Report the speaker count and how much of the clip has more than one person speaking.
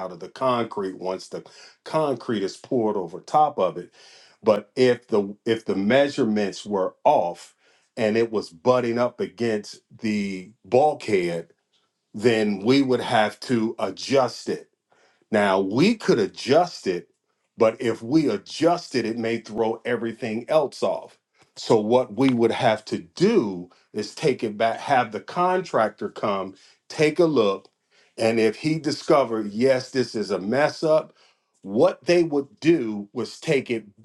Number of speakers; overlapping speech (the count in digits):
1, no overlap